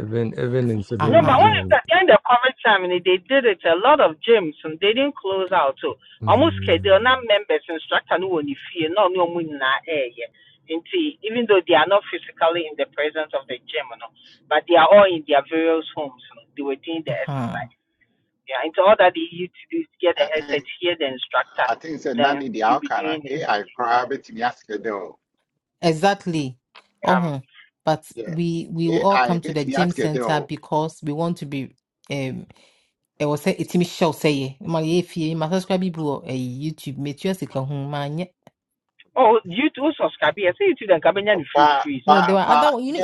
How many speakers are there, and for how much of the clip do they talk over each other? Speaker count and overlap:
4, about 17%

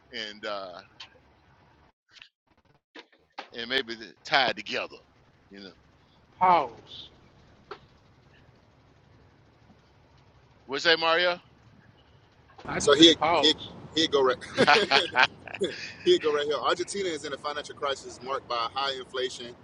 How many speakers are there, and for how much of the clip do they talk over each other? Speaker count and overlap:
3, about 4%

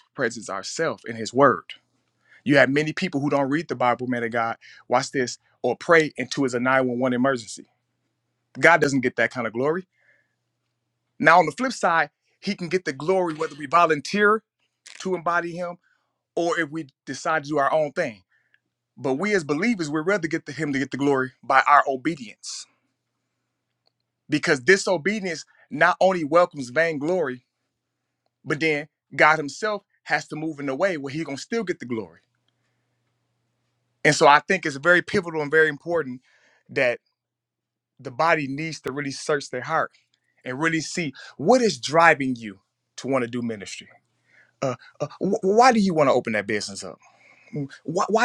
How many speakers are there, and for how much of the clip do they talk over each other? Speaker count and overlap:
1, no overlap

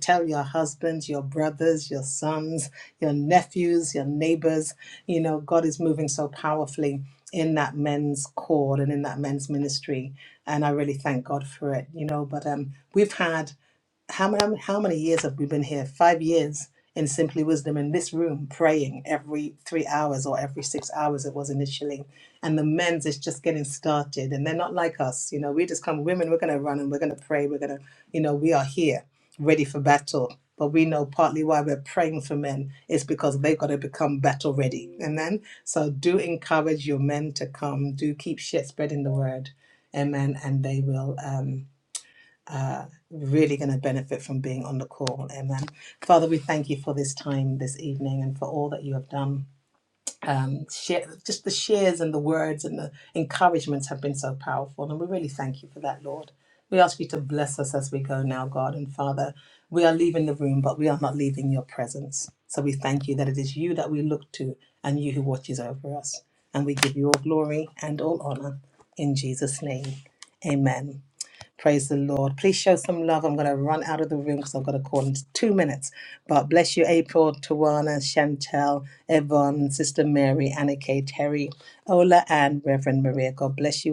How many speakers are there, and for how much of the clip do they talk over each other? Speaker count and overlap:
1, no overlap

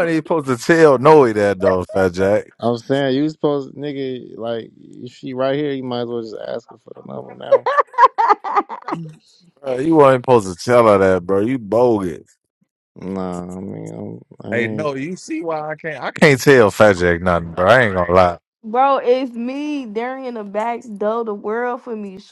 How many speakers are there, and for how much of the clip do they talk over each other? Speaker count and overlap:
3, about 3%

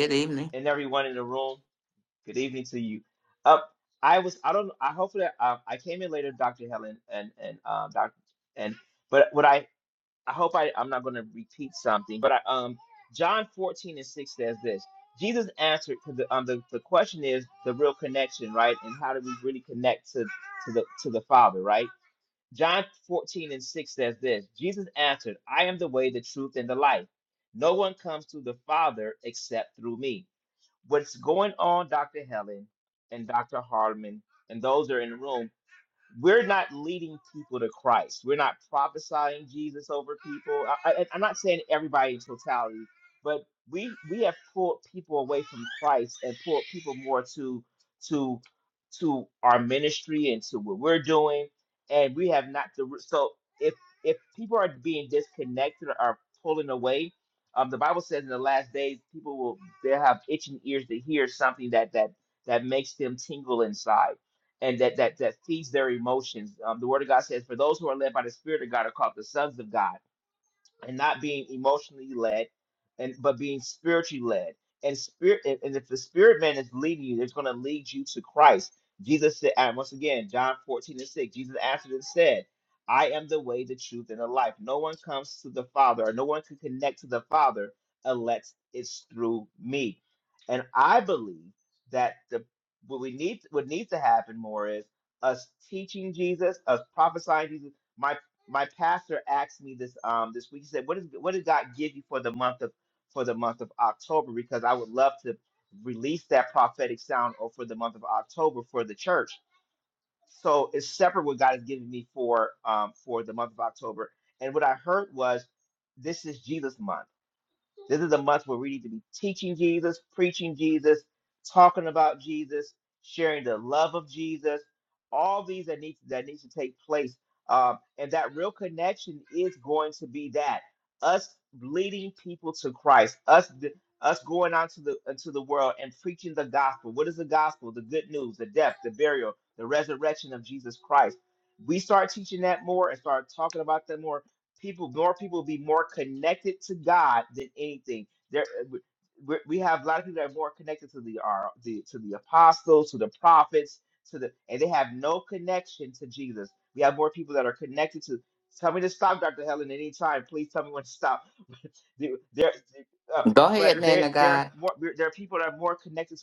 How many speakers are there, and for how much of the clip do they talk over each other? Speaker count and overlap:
2, about 1%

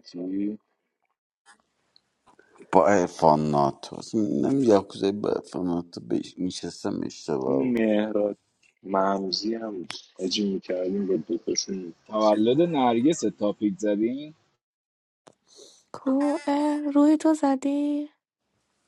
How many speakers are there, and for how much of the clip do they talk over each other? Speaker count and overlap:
4, about 1%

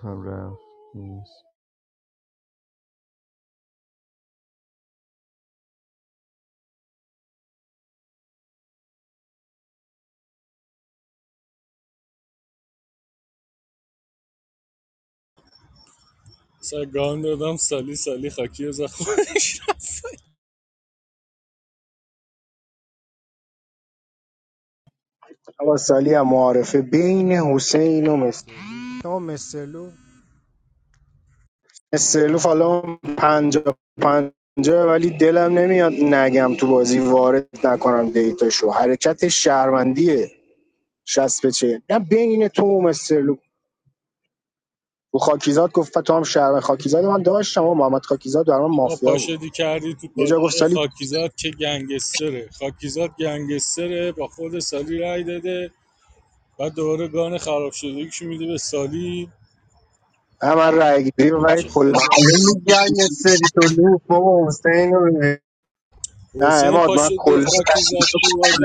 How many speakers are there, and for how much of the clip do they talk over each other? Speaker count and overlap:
4, about 4%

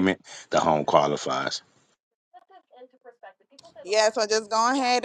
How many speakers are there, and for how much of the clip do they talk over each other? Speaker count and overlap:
2, no overlap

